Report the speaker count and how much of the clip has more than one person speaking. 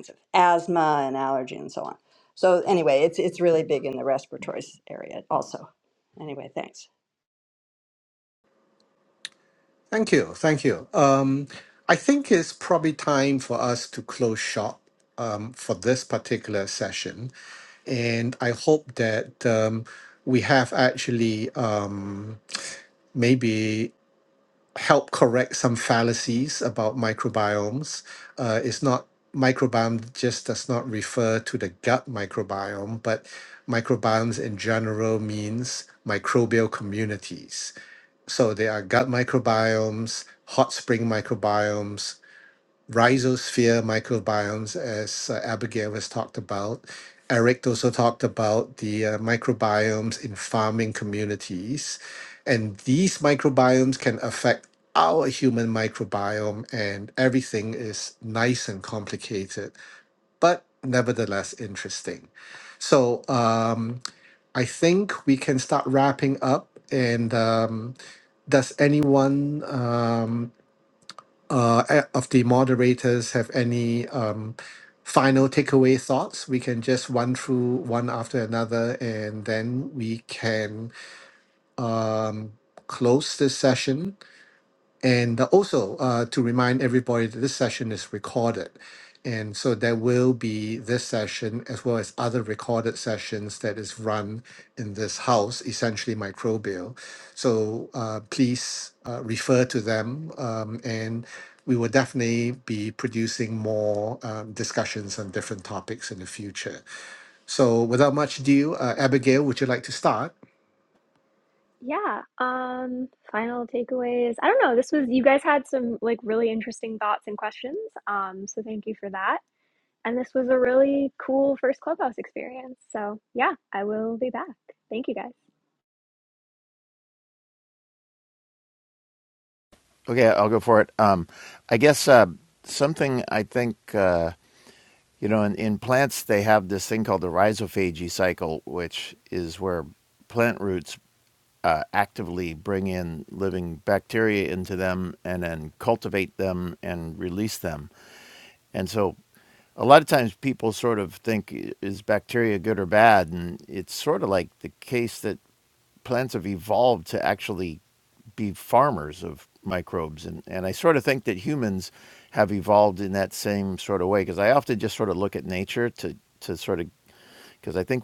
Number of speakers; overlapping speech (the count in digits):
4, no overlap